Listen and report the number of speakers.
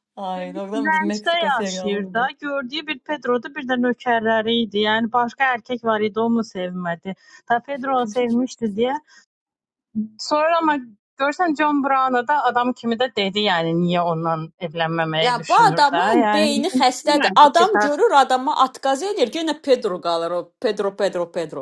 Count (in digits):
3